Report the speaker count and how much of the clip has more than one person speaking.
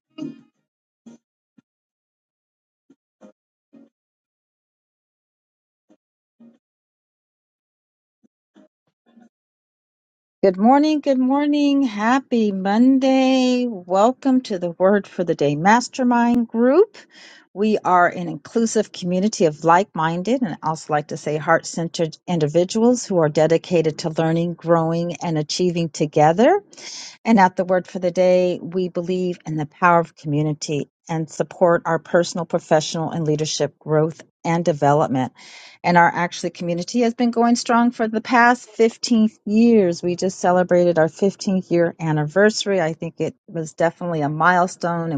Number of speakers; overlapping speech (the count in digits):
1, no overlap